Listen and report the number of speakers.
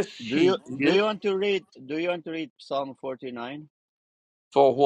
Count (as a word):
two